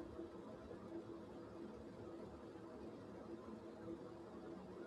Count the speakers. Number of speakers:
0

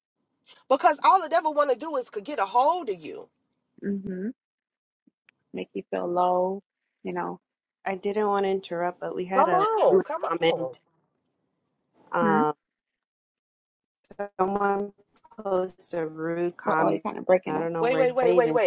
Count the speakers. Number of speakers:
3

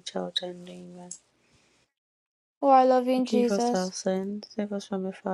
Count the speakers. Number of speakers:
2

